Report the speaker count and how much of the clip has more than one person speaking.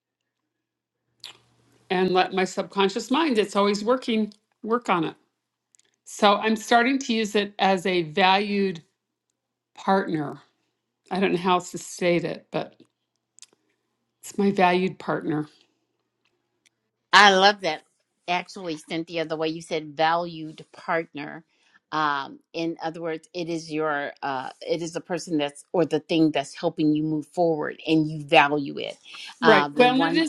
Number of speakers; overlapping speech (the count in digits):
2, about 3%